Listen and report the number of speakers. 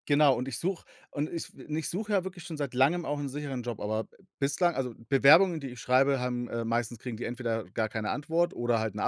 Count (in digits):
1